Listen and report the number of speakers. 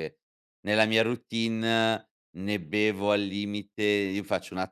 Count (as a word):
one